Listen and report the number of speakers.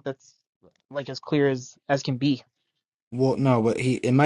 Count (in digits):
2